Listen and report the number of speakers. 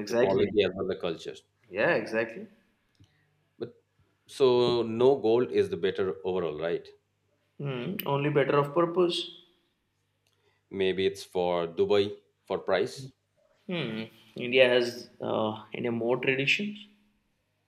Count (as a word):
two